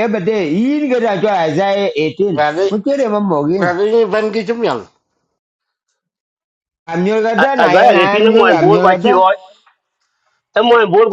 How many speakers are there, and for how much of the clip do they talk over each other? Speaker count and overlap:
3, about 19%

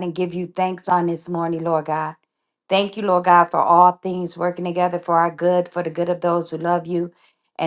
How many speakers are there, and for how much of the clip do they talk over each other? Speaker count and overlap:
1, no overlap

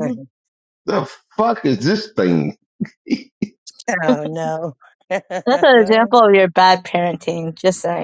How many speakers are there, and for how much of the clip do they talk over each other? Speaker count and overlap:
3, about 2%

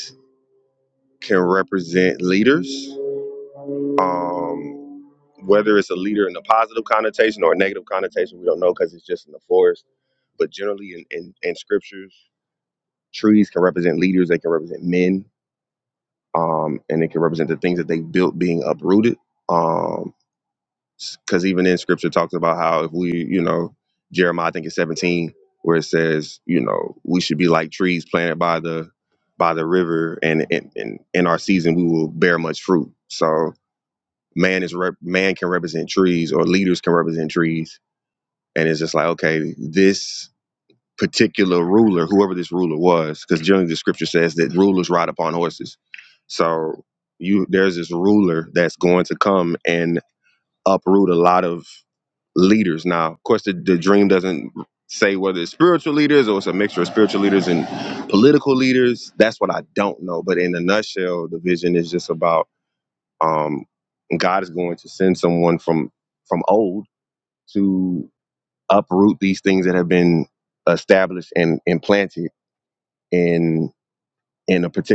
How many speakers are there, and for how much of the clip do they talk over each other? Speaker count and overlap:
1, no overlap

